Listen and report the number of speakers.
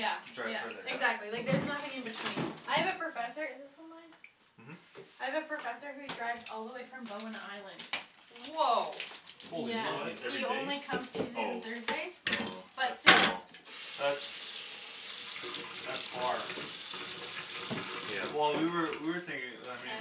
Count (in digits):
4